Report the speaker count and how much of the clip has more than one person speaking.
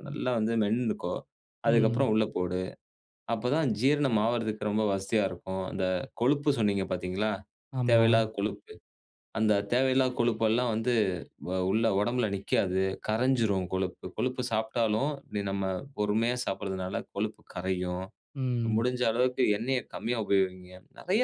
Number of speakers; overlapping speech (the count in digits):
2, about 4%